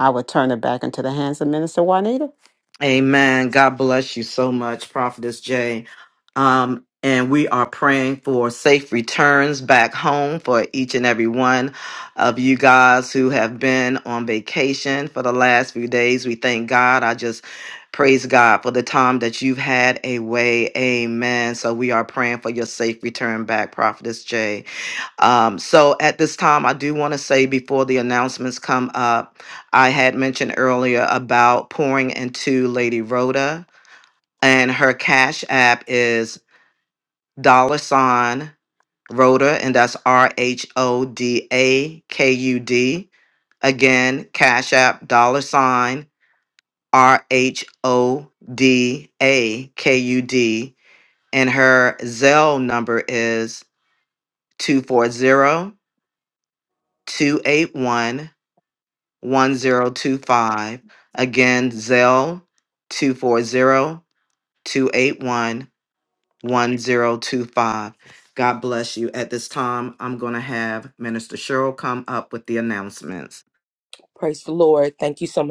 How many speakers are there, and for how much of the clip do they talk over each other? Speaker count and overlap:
three, no overlap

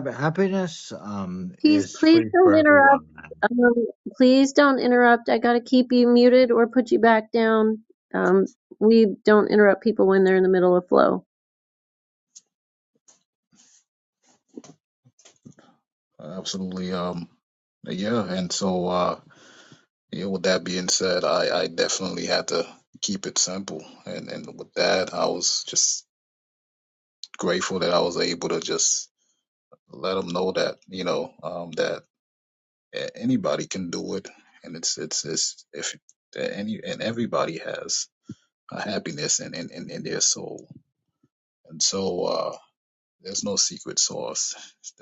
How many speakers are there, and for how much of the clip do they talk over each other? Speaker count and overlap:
three, about 3%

